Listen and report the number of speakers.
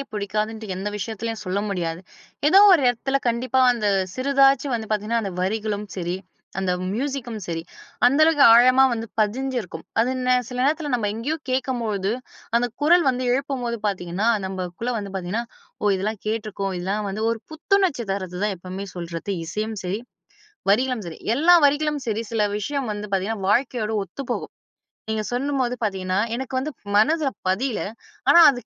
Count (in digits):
1